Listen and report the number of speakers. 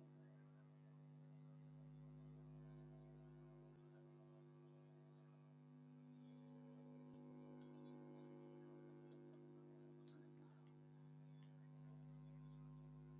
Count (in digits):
0